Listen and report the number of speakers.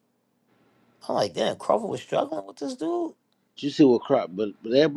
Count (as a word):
two